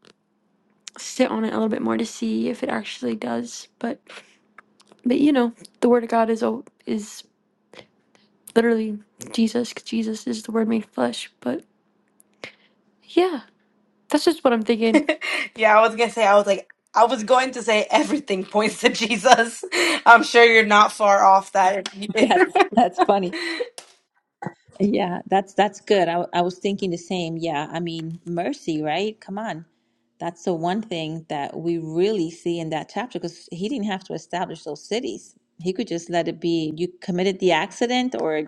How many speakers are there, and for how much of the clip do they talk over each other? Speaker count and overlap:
three, no overlap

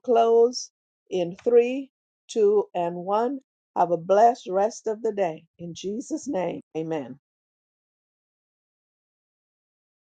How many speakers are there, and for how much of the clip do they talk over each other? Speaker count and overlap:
one, no overlap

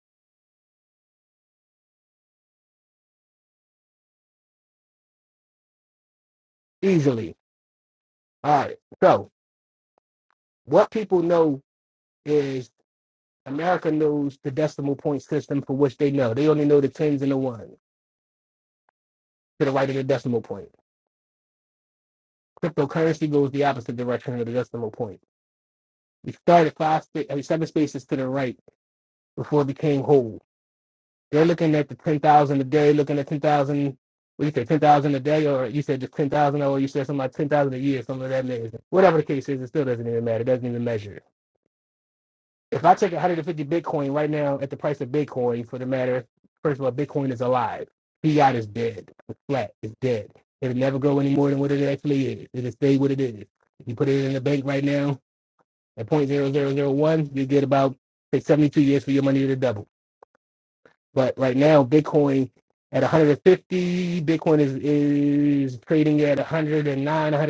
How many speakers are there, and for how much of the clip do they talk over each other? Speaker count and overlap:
one, no overlap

